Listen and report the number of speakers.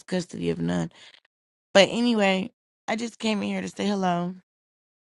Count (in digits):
1